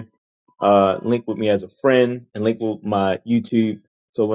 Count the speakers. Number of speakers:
one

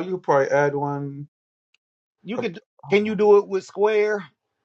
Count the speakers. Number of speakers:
two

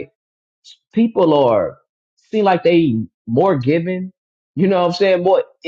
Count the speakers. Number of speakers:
one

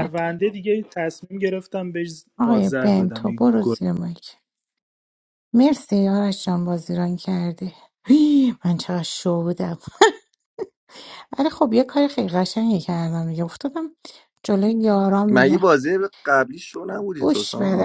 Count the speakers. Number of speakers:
three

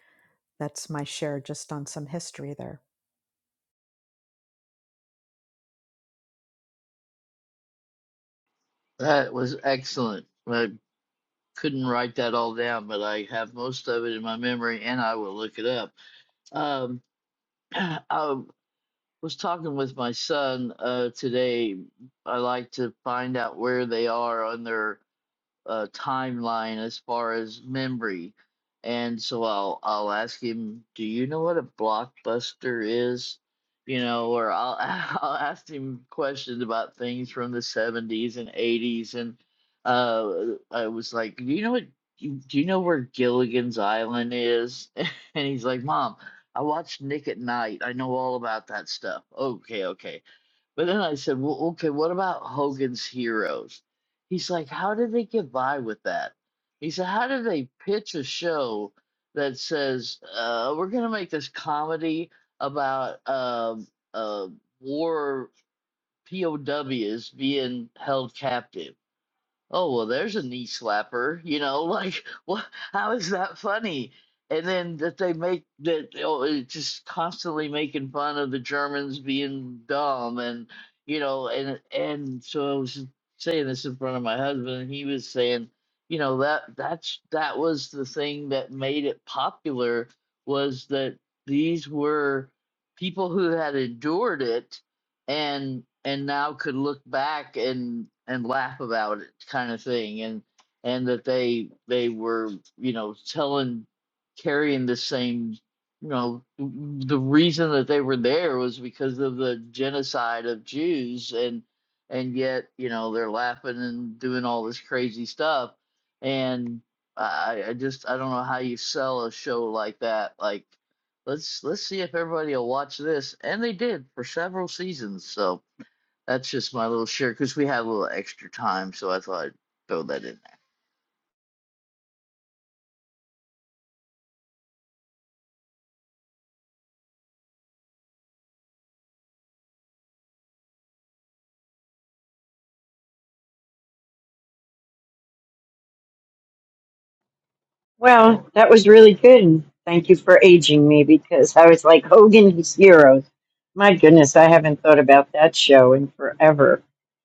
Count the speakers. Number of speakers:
three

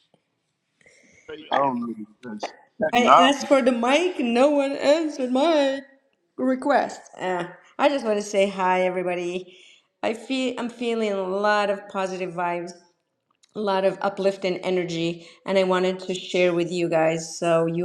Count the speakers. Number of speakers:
two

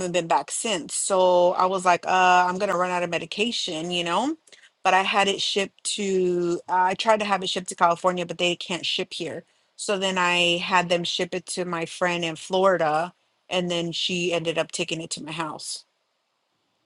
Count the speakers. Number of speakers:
one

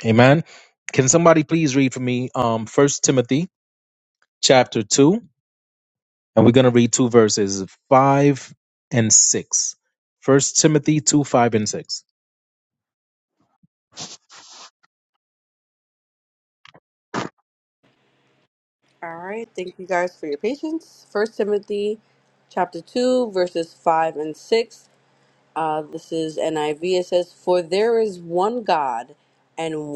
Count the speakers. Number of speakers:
two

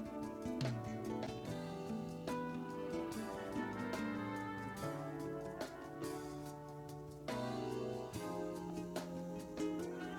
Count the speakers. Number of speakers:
zero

